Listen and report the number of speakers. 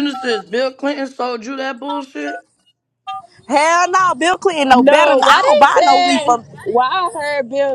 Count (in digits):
3